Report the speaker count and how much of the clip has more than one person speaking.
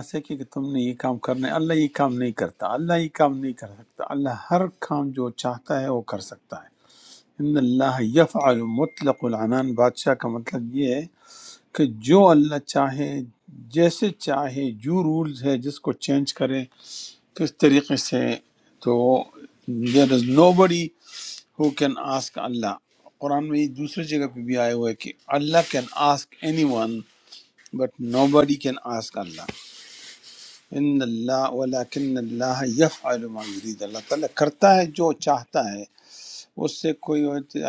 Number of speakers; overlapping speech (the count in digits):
1, no overlap